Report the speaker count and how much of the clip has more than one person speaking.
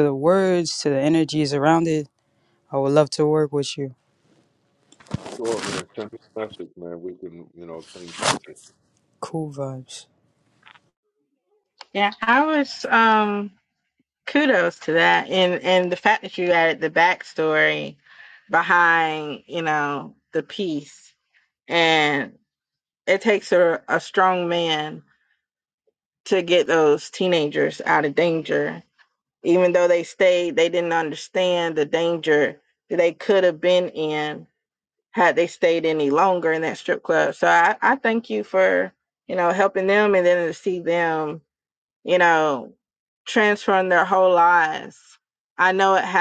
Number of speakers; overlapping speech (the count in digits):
3, no overlap